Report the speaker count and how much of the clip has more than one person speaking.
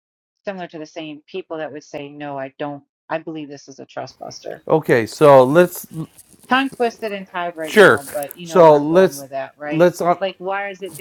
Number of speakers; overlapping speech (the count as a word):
two, about 10%